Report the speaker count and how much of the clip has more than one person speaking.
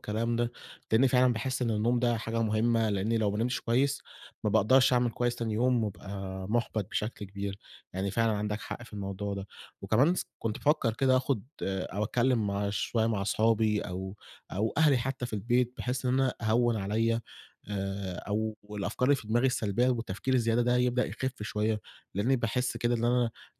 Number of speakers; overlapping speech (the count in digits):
1, no overlap